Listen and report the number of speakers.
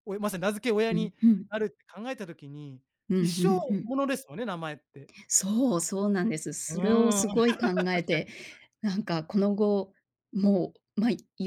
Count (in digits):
2